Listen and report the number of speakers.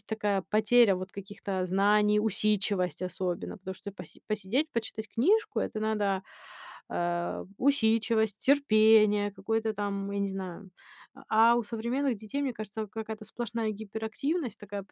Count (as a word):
one